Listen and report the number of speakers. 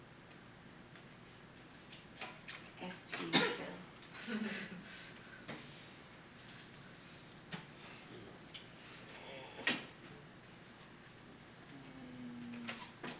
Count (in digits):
1